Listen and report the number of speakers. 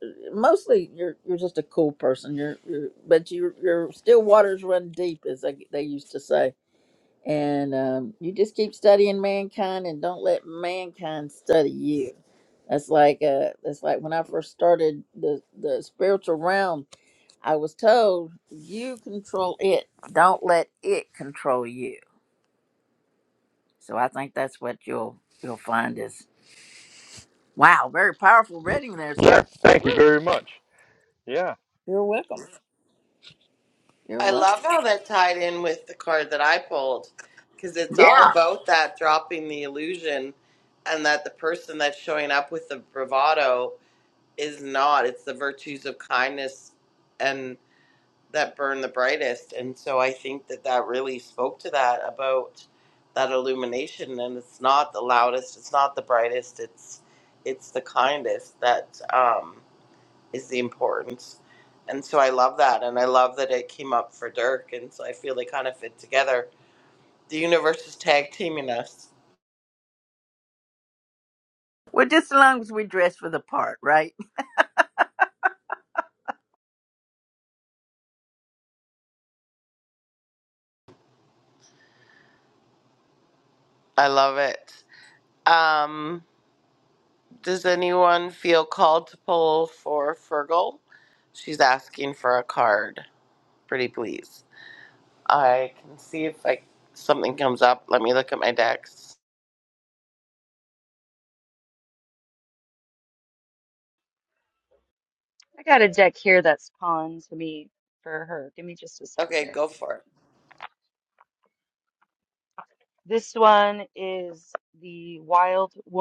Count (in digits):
4